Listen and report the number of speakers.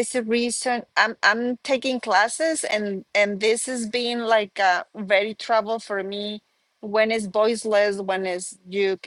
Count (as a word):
one